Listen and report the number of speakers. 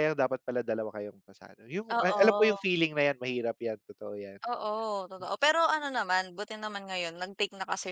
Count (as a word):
two